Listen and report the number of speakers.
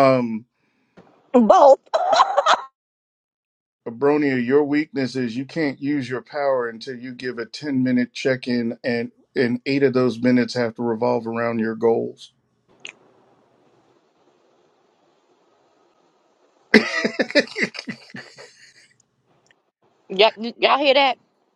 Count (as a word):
two